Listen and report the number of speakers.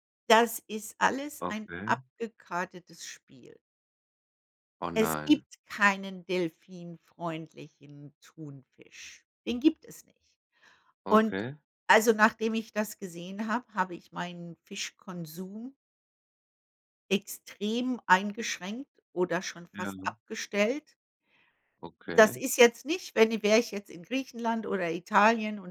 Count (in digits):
2